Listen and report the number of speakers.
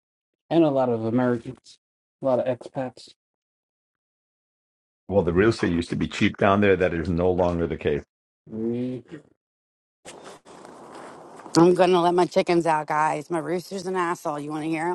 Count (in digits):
3